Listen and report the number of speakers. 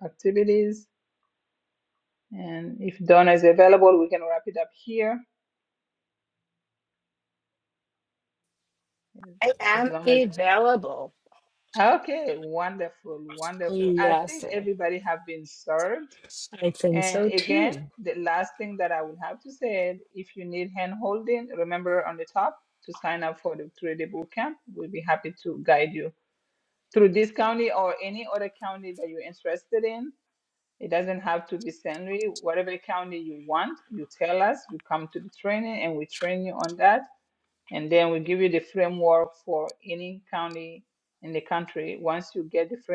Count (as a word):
two